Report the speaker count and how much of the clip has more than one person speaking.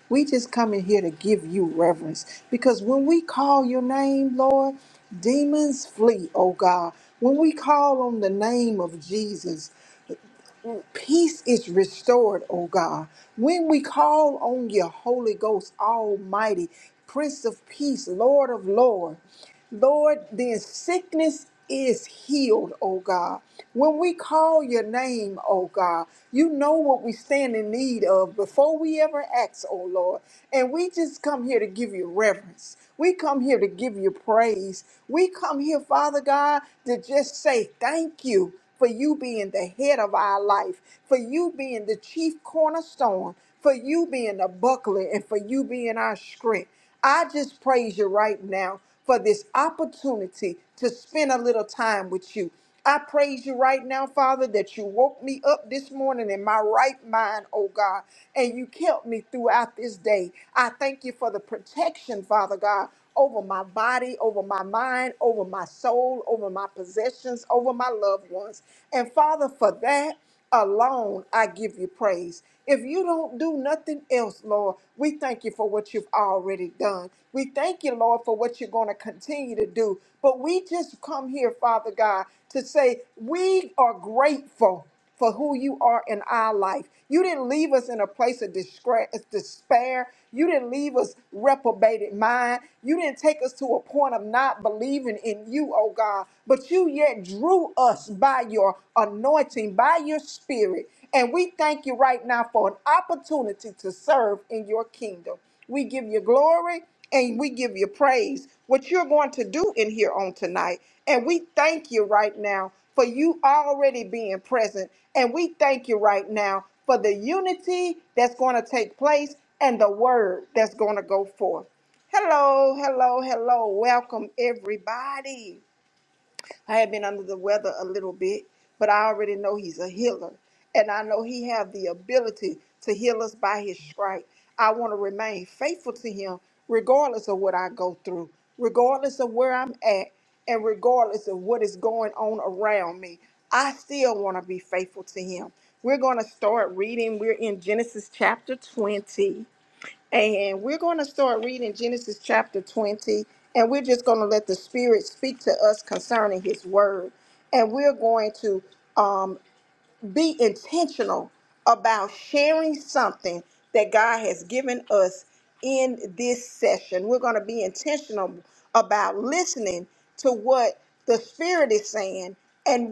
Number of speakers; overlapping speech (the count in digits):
1, no overlap